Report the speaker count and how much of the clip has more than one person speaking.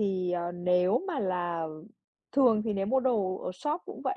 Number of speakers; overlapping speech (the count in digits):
1, no overlap